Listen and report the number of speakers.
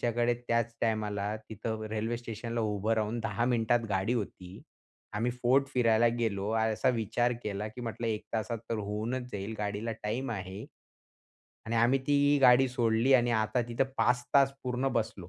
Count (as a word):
one